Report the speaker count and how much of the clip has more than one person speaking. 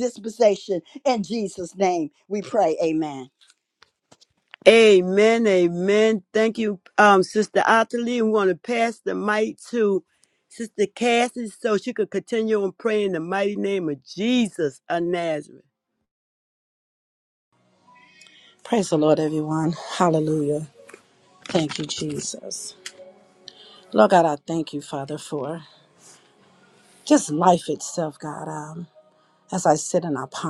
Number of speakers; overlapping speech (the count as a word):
three, no overlap